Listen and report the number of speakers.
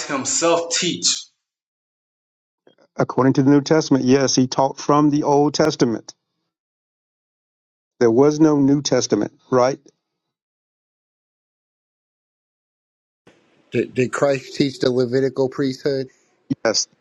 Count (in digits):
3